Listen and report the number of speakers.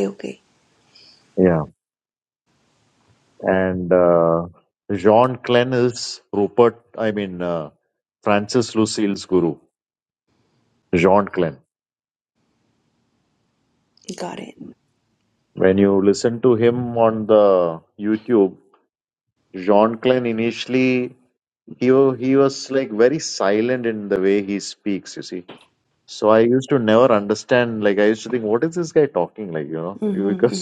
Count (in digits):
2